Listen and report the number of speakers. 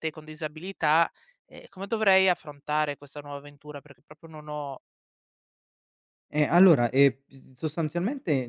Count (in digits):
2